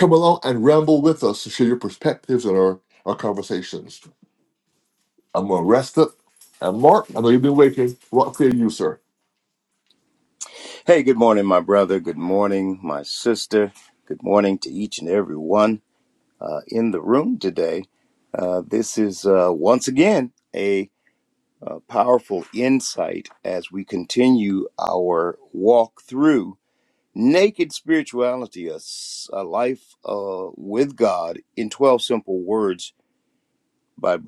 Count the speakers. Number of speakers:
two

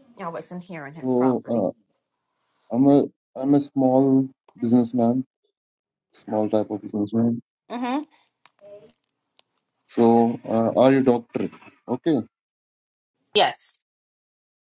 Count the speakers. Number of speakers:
two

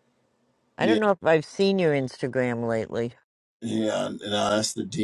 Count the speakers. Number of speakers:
two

